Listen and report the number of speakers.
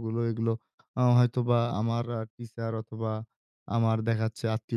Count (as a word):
one